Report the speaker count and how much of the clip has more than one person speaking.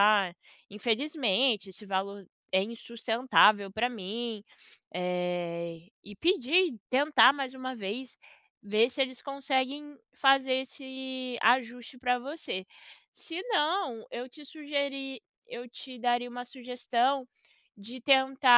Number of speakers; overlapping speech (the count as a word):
one, no overlap